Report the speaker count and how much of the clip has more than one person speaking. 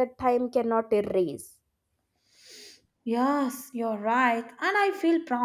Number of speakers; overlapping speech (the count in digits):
2, no overlap